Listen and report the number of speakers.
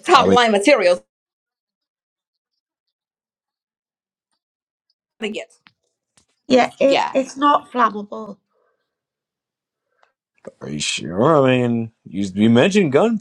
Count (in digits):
3